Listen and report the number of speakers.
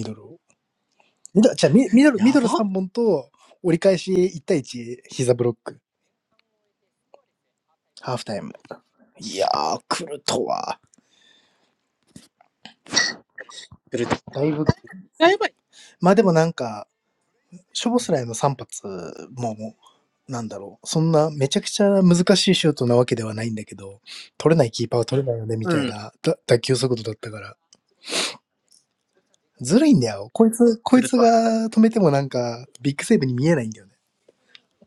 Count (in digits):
2